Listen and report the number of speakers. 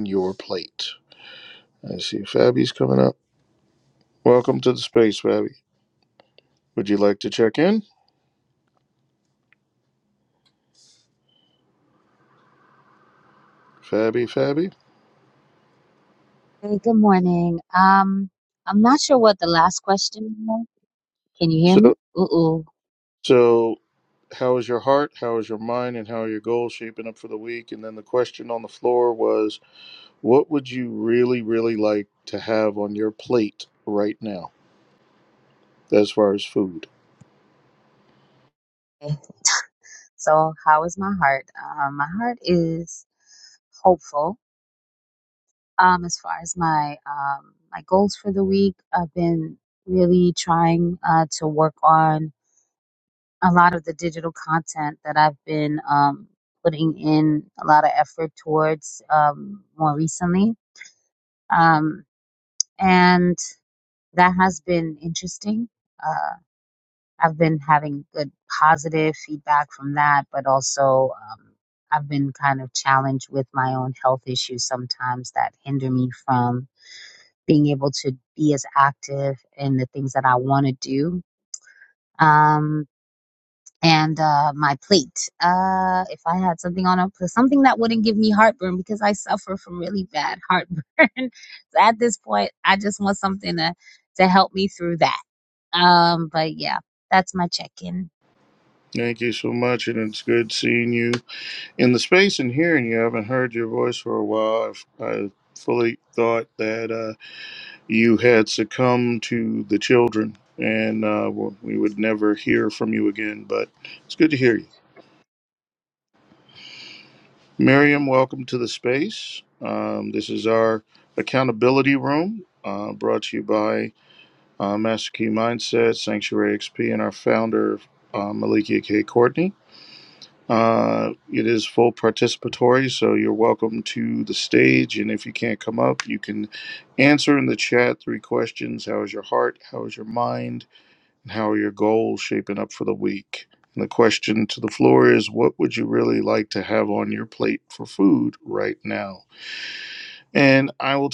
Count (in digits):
2